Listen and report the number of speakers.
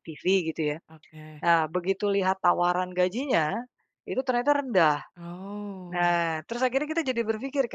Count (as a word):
two